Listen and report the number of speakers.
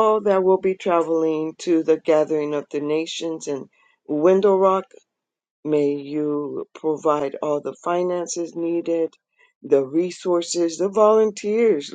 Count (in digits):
1